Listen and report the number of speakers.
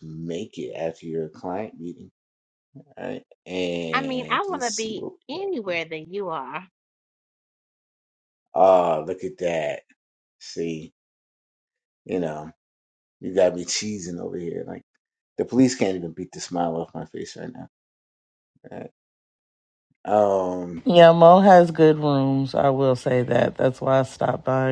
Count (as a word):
three